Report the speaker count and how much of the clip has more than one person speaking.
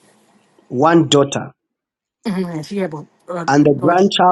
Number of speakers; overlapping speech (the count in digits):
2, about 13%